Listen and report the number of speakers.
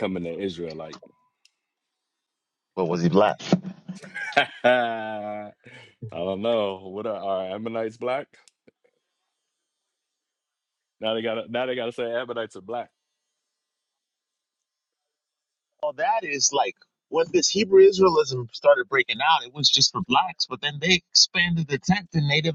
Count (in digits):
2